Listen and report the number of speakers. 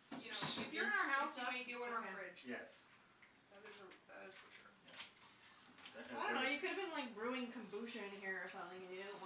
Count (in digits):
3